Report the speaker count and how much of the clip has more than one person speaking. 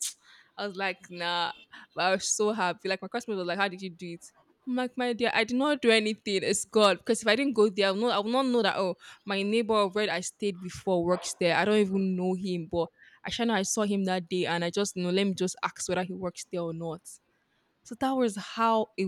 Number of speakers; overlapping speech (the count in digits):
1, no overlap